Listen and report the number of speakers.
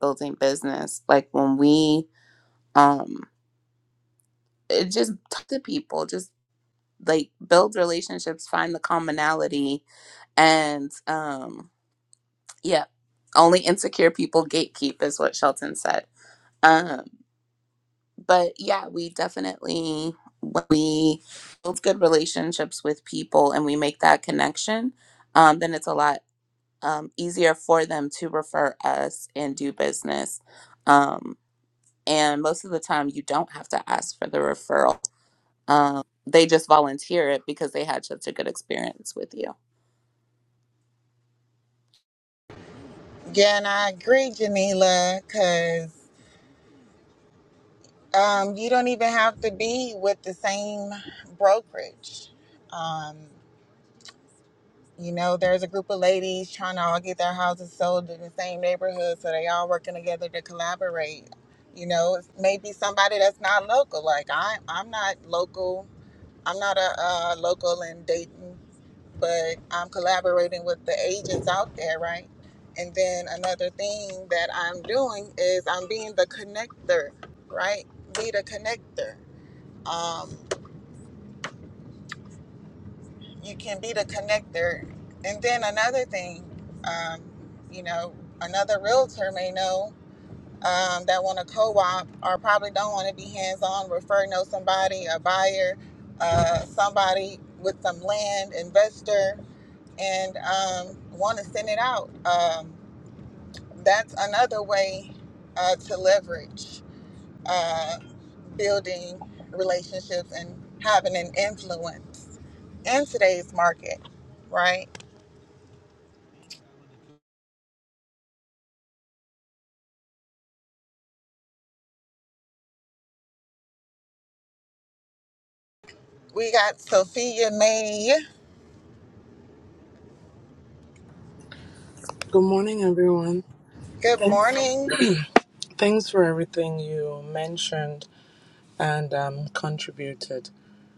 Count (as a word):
three